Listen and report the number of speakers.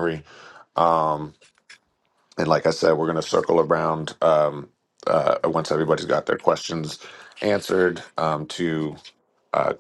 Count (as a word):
one